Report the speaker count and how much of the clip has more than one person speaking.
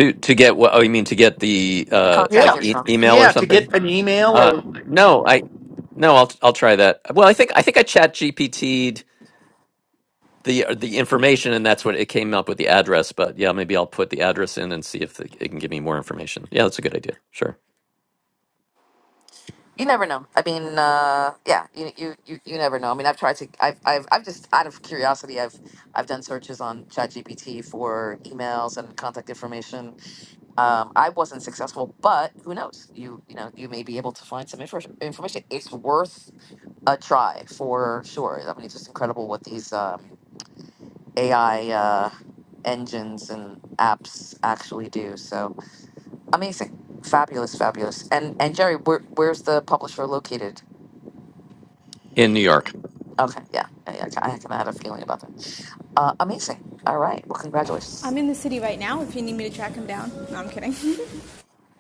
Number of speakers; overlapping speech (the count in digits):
4, about 3%